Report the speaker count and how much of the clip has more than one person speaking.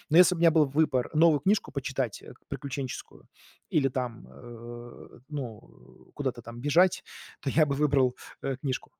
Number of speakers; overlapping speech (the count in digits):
1, no overlap